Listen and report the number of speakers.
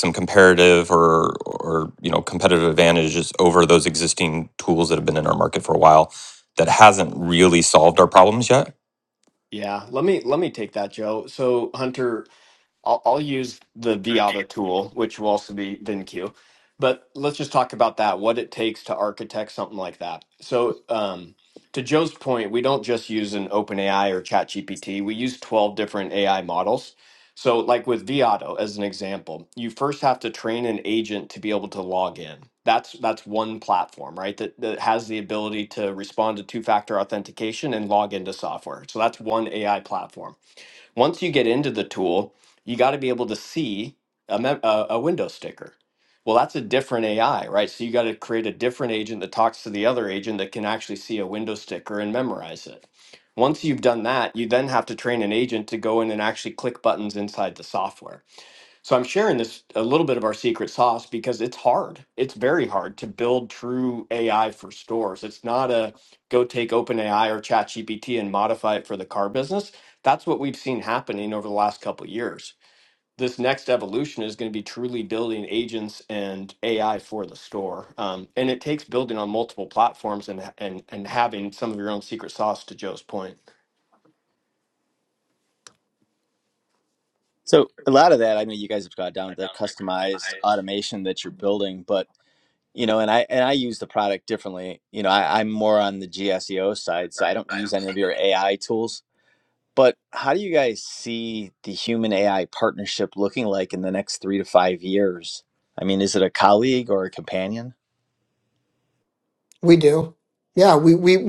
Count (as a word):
four